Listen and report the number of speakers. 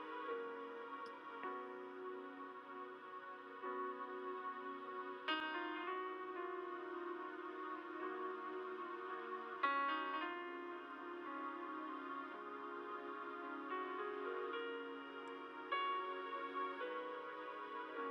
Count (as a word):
zero